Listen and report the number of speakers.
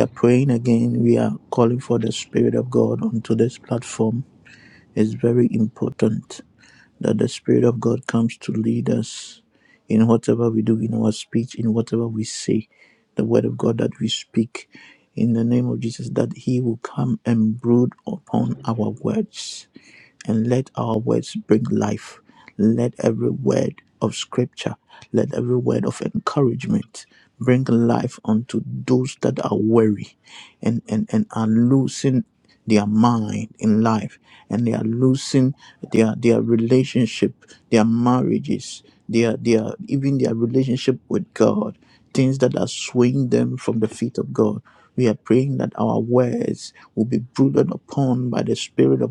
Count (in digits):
1